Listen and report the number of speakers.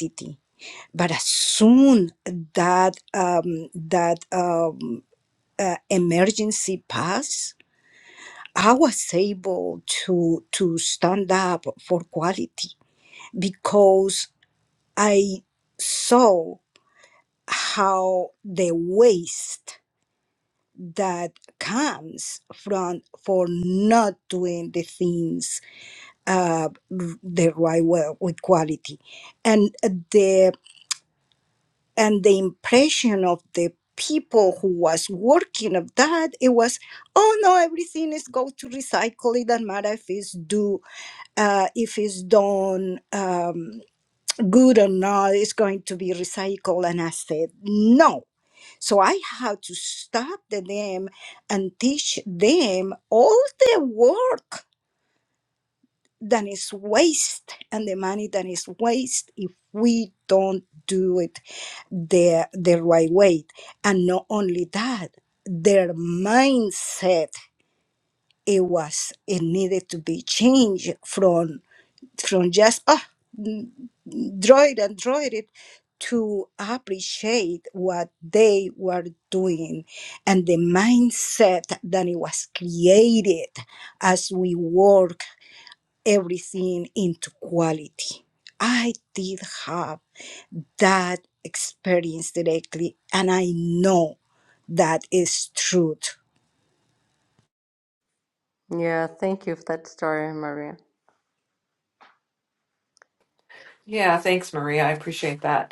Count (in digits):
3